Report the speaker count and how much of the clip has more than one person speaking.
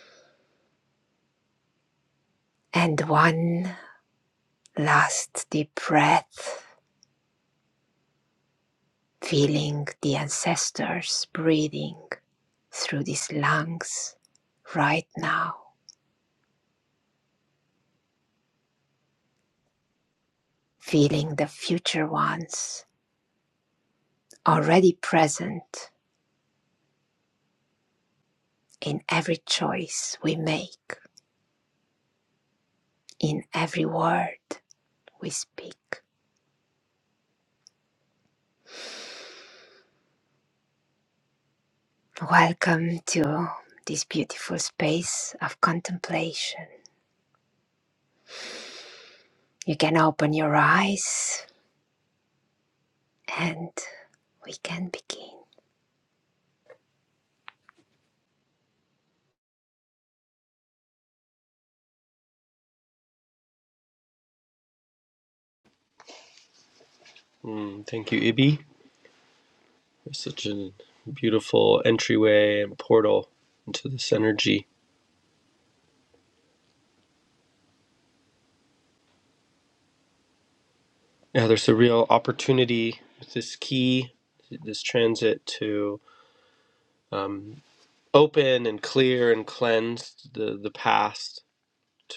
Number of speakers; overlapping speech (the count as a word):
two, no overlap